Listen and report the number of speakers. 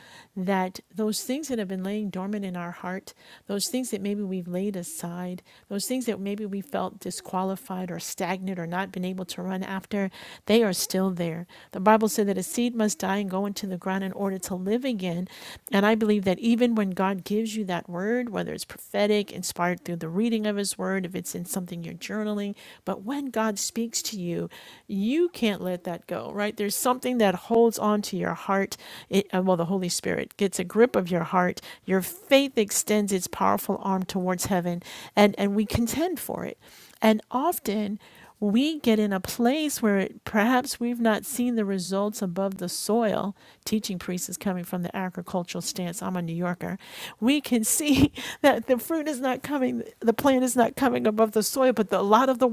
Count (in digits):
1